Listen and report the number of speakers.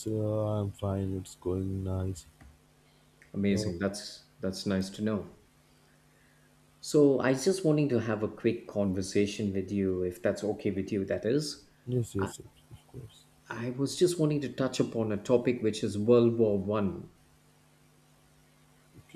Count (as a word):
two